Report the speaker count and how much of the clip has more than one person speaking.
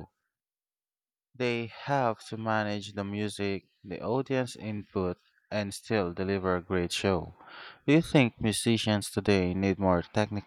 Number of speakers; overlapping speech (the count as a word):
one, no overlap